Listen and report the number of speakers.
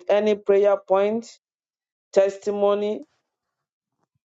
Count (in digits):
1